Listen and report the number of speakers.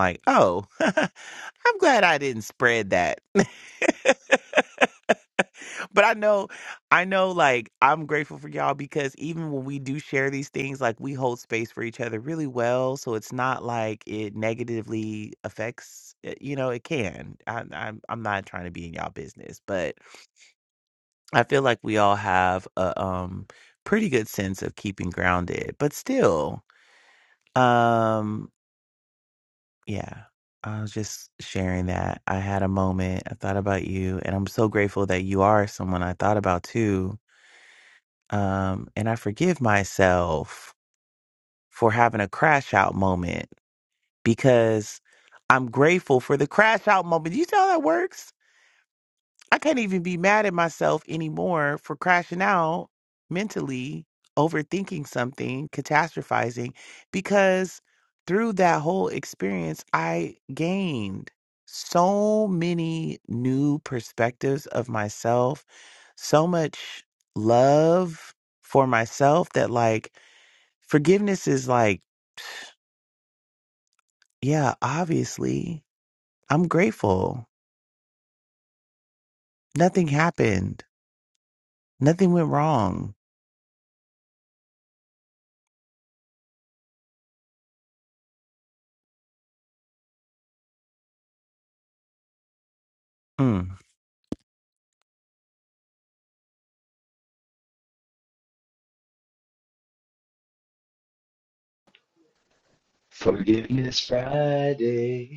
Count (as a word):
two